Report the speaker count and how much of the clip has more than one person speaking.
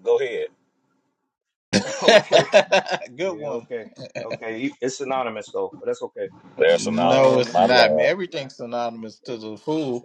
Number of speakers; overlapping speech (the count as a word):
three, about 20%